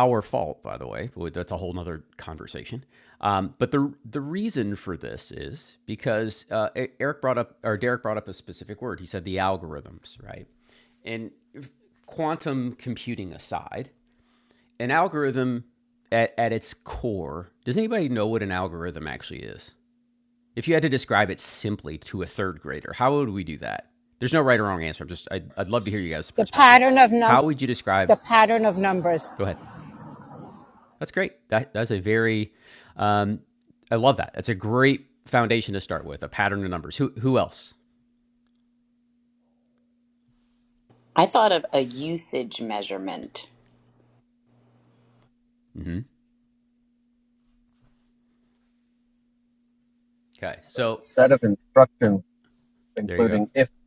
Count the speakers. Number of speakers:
four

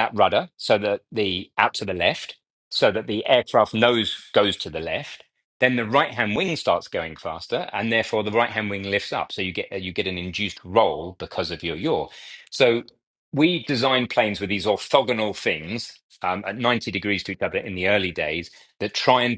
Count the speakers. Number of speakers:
one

